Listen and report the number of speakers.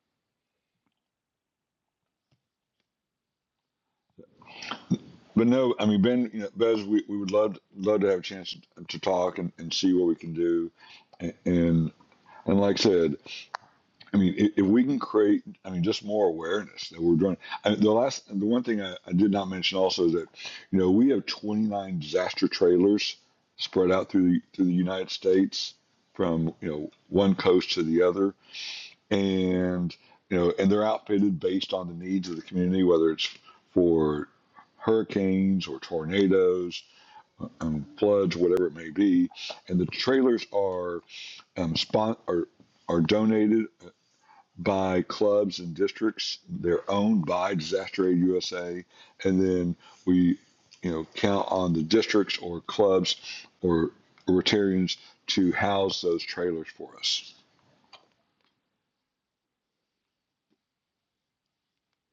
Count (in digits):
1